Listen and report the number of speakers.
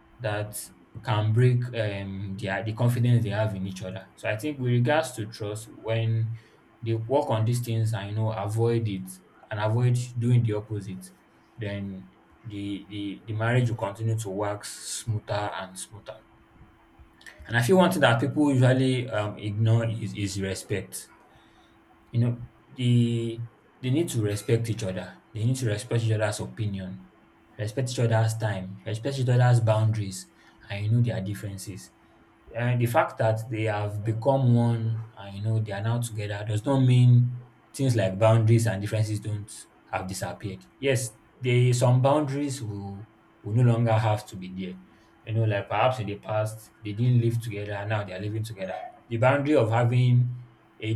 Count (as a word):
one